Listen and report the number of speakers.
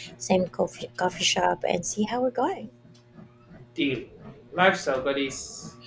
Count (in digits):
2